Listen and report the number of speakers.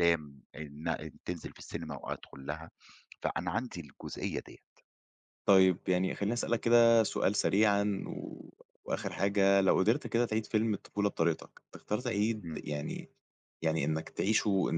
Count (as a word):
two